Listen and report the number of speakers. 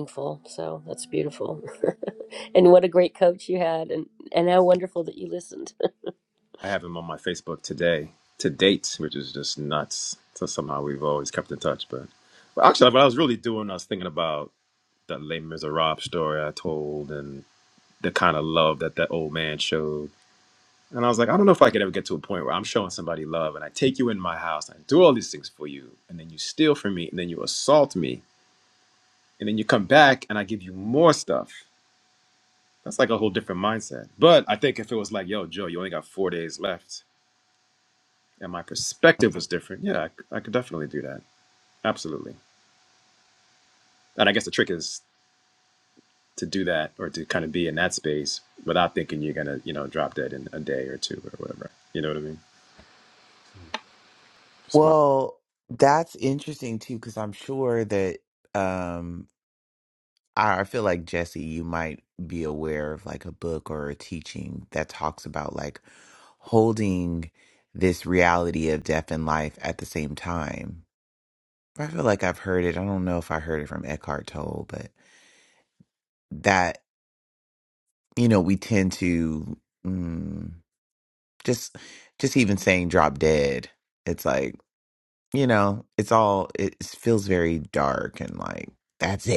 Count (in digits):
3